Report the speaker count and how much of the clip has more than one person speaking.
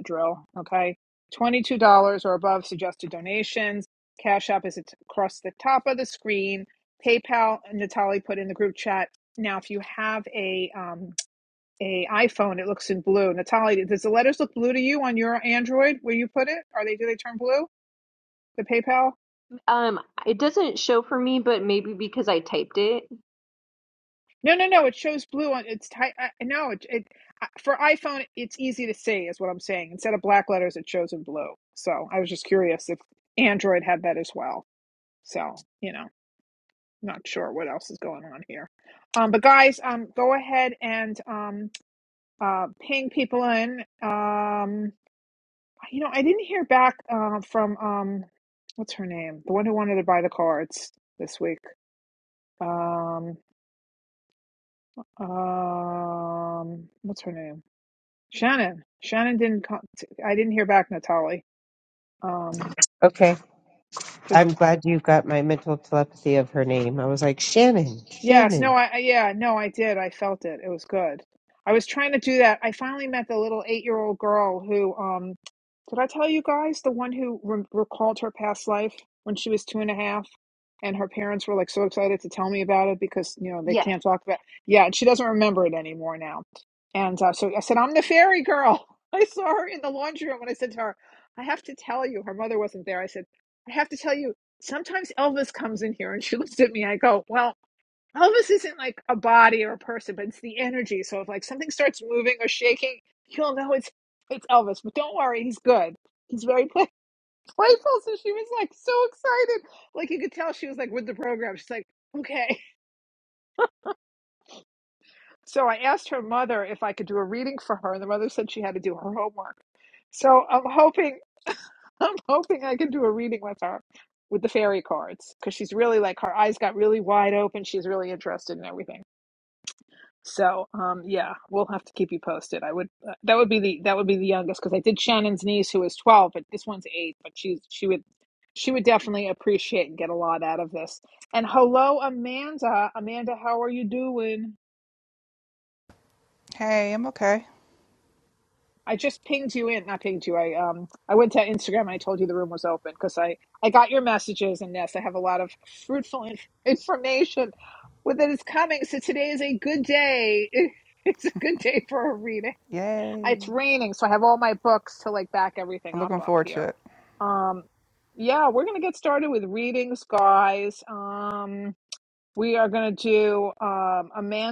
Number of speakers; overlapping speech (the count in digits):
4, about 1%